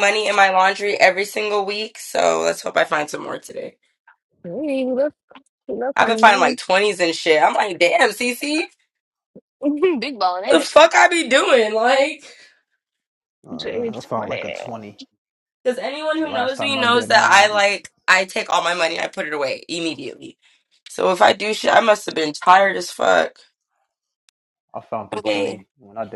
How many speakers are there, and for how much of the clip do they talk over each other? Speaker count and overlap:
3, about 14%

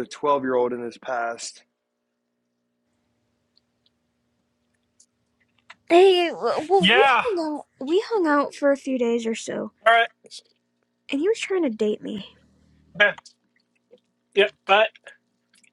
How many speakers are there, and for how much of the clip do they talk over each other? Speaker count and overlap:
3, about 3%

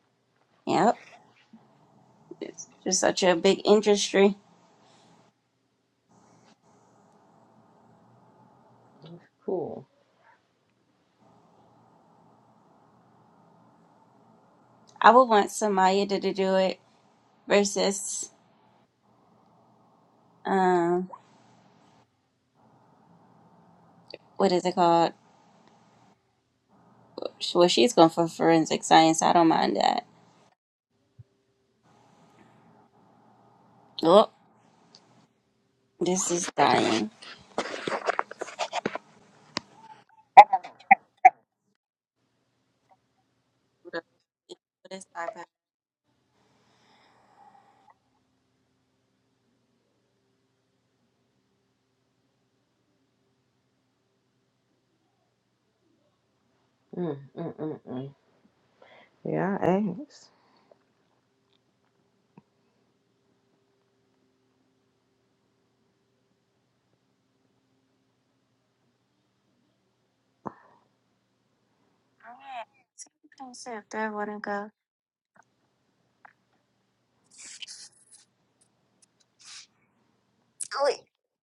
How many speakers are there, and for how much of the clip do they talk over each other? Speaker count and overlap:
3, no overlap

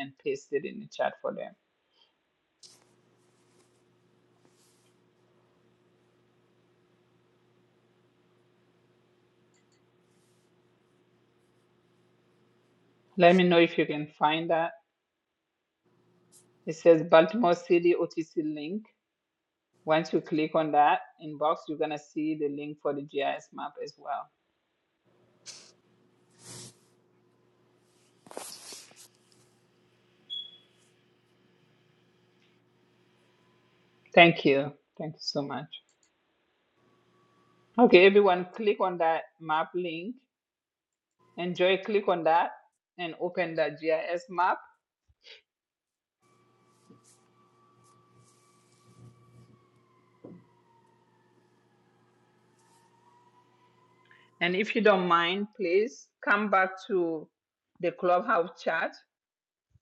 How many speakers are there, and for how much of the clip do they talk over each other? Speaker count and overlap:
1, no overlap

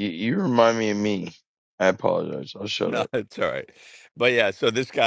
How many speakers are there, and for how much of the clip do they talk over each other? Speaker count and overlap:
2, about 4%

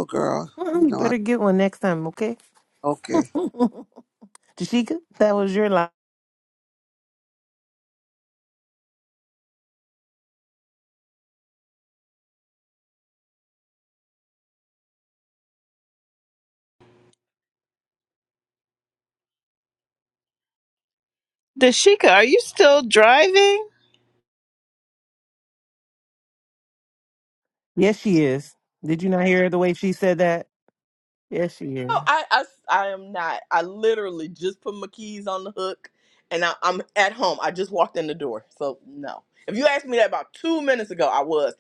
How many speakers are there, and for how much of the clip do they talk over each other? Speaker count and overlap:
4, about 2%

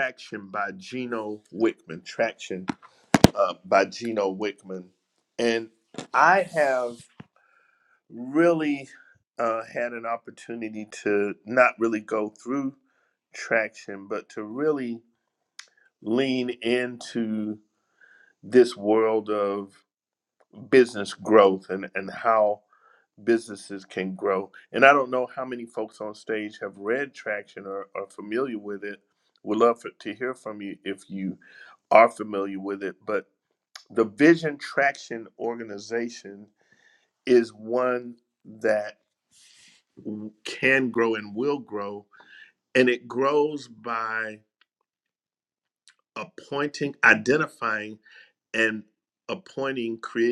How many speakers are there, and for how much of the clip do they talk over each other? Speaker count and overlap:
1, no overlap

